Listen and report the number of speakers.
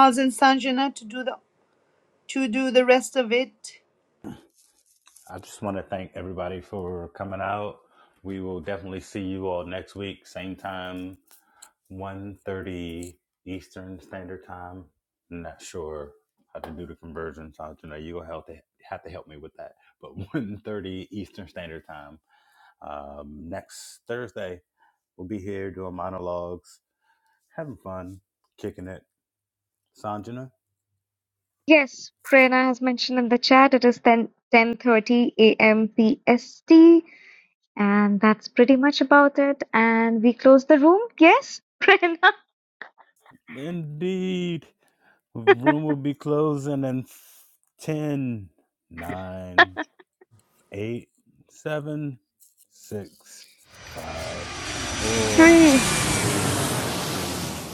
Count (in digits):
3